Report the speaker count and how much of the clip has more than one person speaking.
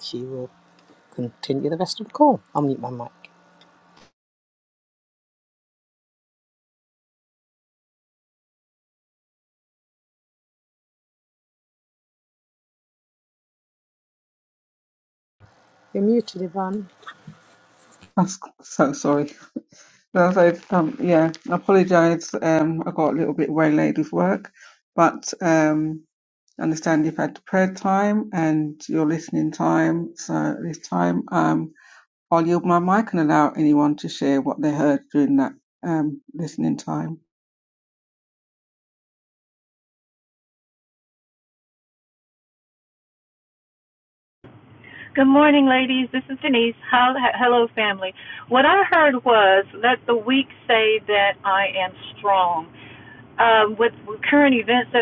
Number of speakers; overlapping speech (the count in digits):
3, no overlap